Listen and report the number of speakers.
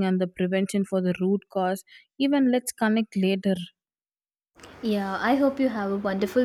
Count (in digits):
2